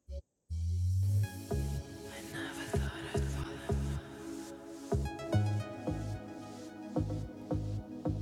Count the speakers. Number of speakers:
zero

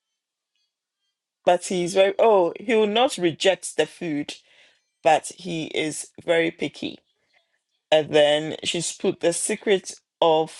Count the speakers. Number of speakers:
one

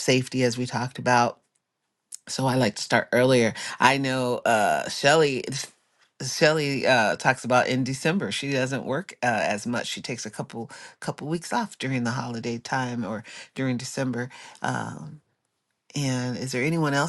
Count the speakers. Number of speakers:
one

